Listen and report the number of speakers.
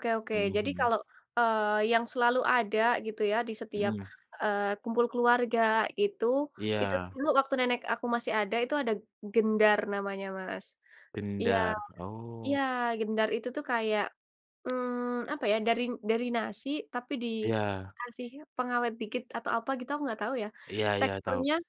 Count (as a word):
two